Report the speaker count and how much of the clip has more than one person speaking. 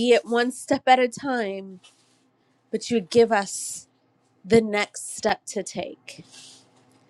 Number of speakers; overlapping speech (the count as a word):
one, no overlap